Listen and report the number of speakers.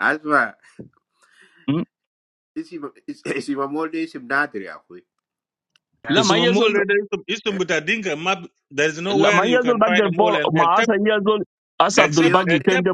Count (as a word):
three